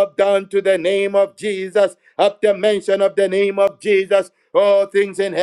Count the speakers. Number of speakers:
one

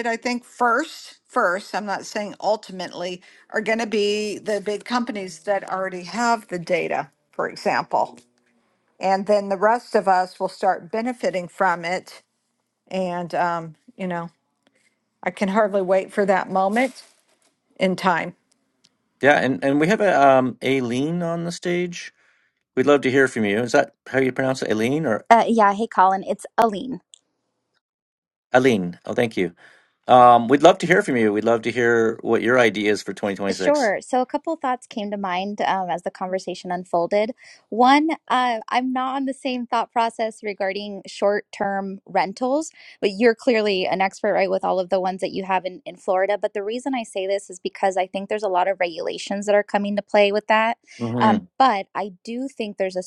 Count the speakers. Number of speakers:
three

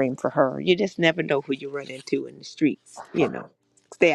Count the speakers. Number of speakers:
one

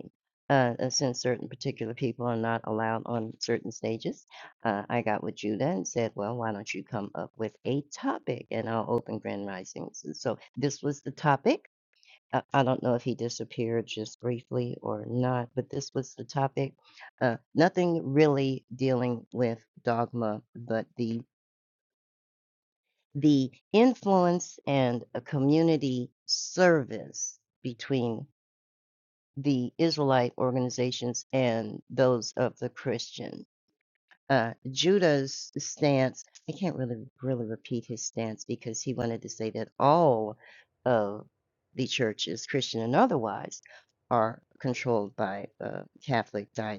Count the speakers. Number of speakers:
one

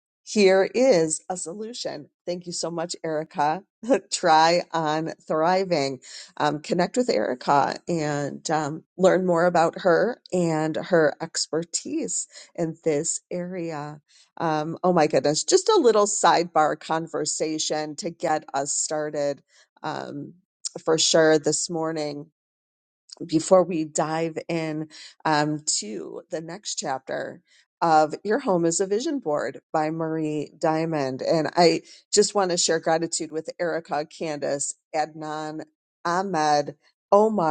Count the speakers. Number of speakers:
one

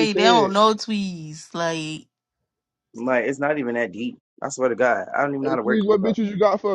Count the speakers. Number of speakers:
three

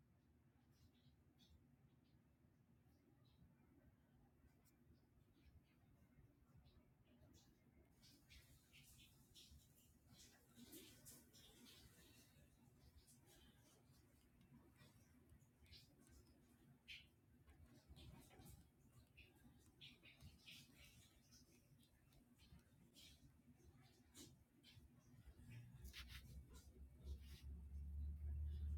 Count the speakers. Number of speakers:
zero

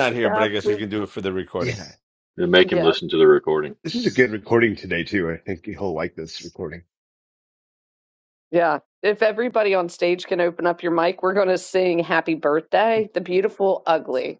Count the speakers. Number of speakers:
four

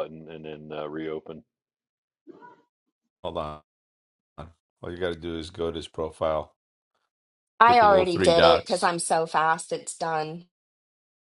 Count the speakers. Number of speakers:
three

